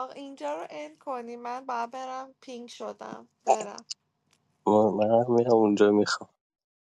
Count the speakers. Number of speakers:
2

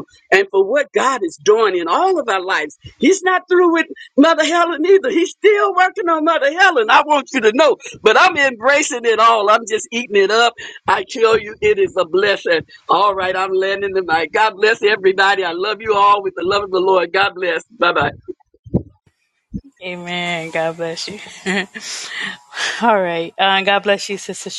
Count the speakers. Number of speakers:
2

